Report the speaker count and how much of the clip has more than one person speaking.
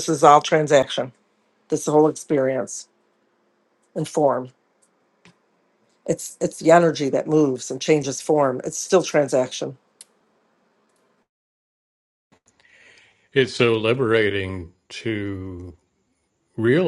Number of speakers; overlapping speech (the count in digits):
2, no overlap